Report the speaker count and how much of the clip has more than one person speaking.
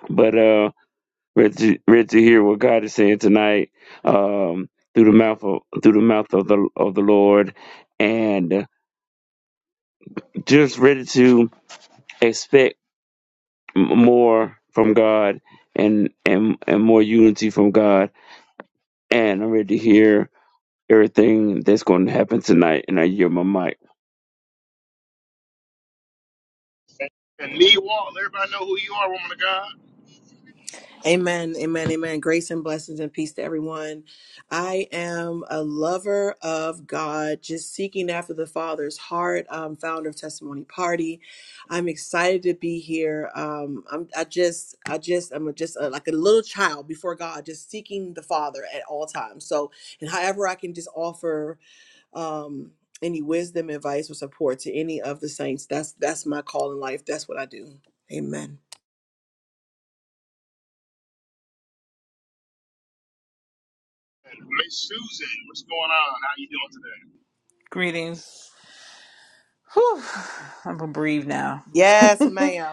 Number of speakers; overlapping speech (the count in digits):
4, no overlap